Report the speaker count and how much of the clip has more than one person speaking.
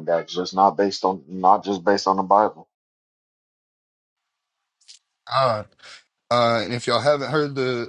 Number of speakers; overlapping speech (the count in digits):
2, no overlap